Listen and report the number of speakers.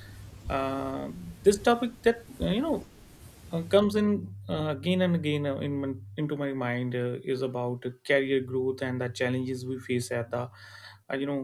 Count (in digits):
1